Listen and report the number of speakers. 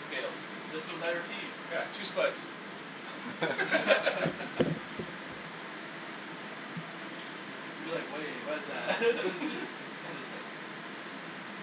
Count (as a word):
two